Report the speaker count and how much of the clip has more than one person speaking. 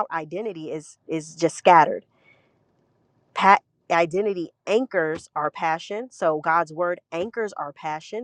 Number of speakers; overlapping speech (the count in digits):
1, no overlap